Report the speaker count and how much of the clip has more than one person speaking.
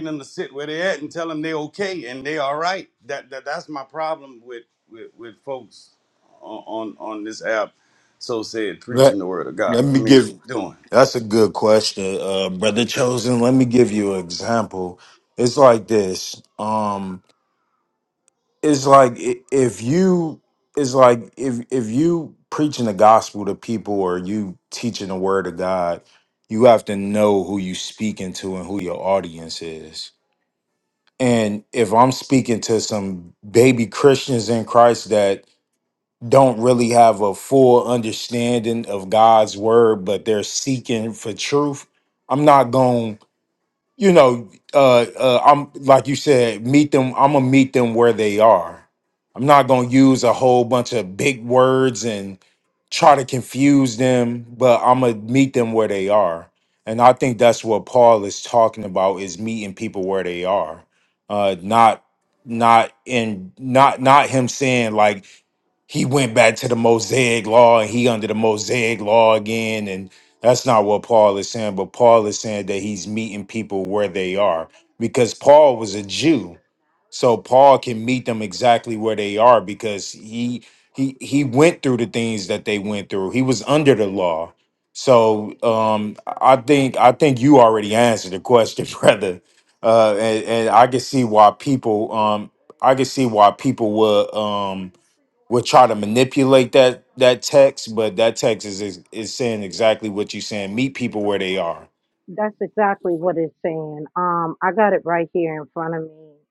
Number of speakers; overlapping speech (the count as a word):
three, about 1%